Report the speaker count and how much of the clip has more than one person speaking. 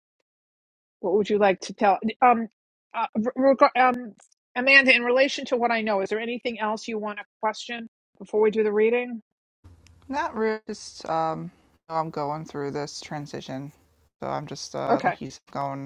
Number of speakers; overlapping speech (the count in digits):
2, about 2%